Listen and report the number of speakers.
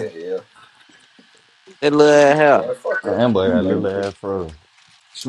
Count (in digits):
3